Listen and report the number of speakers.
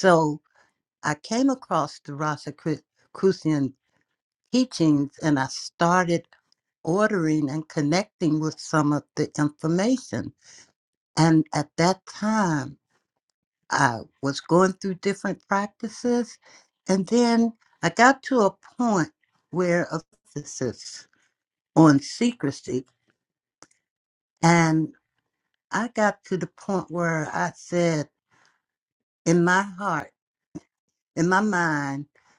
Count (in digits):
1